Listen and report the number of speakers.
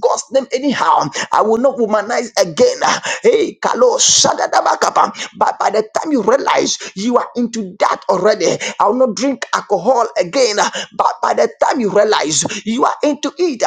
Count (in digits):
1